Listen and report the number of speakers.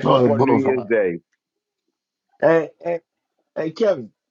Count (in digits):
2